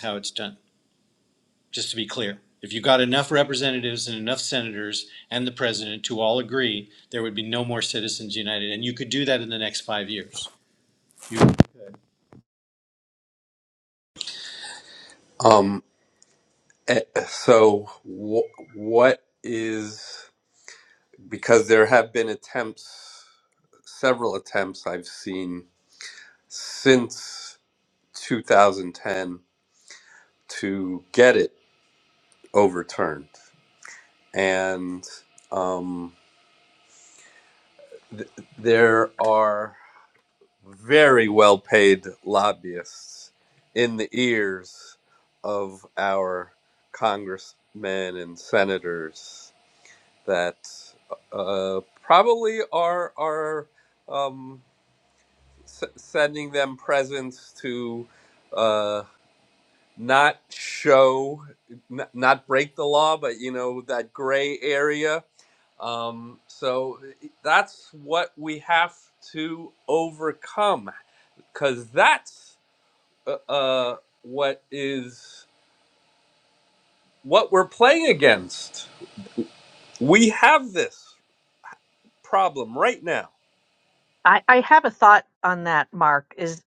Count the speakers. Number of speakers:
3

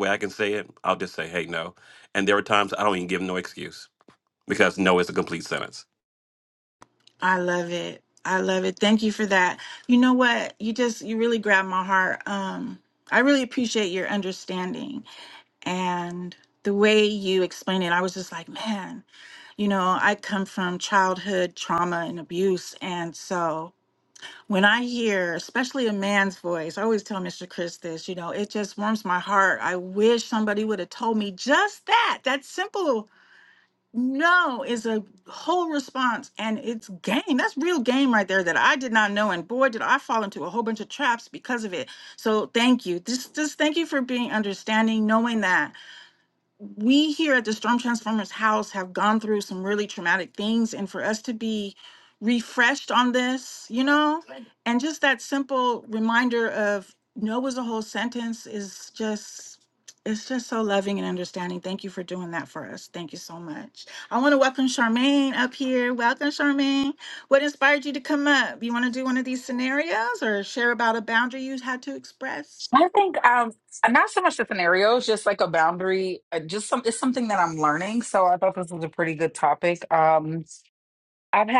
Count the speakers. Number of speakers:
3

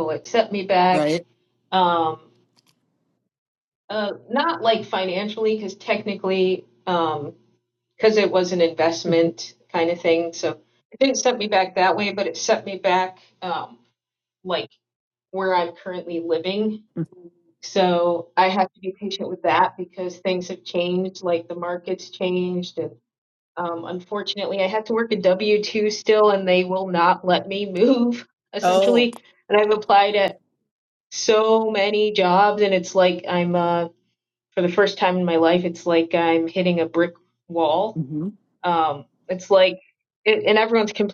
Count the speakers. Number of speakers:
2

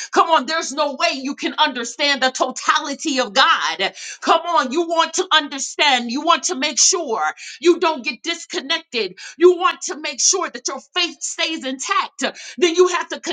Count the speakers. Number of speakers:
1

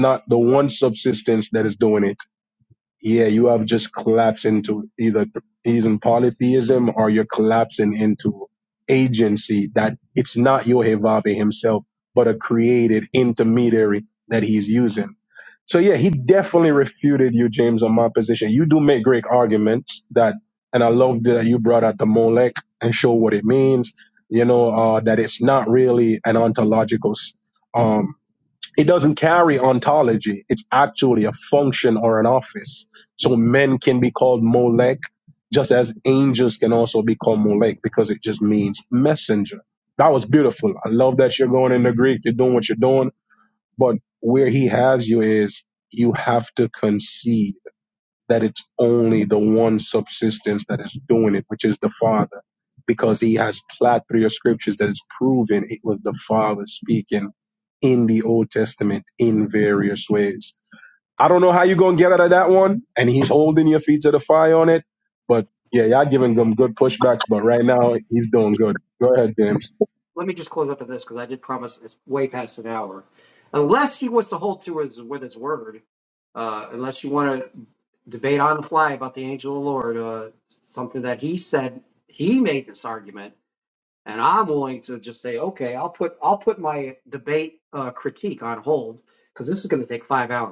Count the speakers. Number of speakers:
2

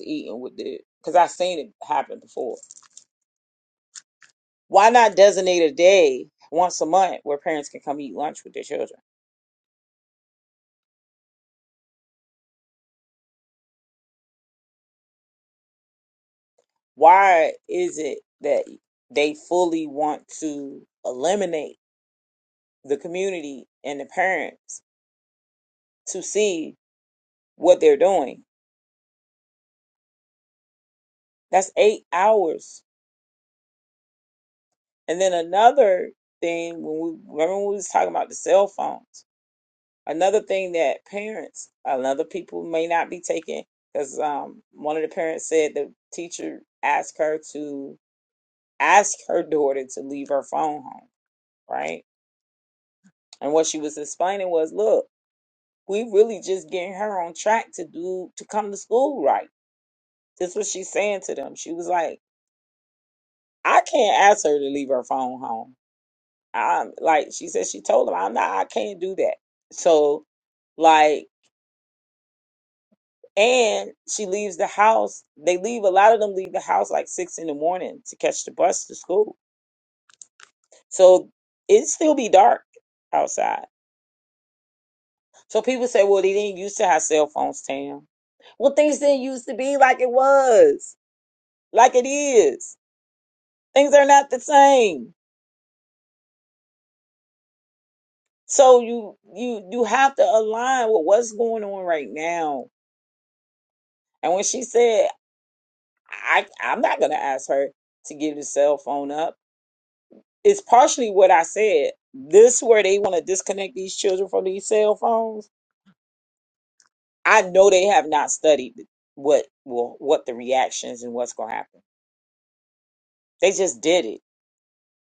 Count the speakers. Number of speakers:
1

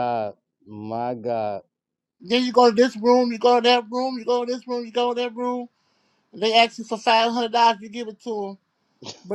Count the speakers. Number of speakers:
2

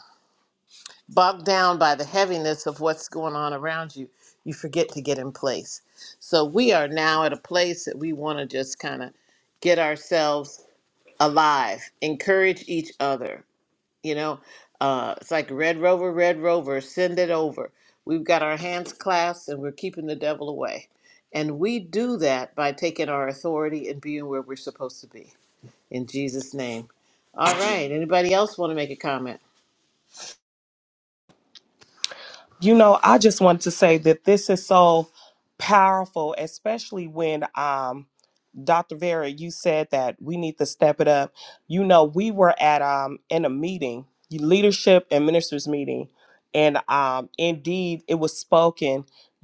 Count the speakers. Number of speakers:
2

